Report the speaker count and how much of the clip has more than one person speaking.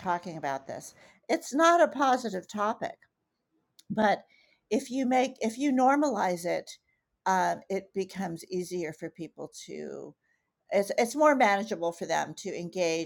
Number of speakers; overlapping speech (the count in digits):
1, no overlap